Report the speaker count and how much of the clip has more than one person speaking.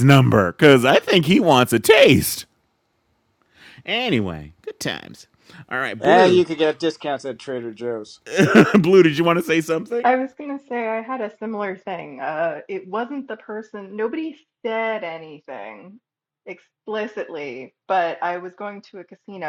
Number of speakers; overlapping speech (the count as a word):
three, about 2%